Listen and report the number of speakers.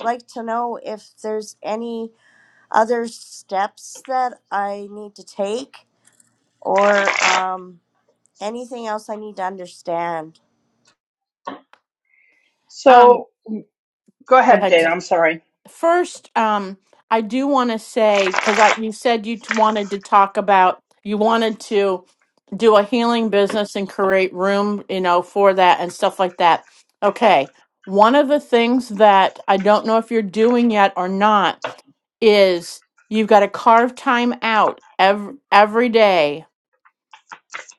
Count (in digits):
3